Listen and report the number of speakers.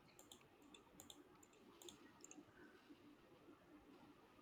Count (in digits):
0